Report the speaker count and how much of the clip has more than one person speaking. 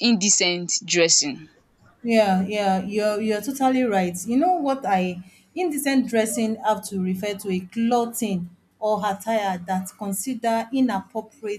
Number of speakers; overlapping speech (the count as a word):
two, no overlap